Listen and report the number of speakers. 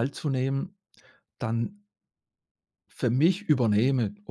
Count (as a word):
one